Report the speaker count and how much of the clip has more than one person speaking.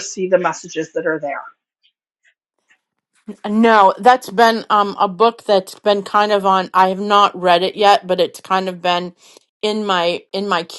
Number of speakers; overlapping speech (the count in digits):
2, no overlap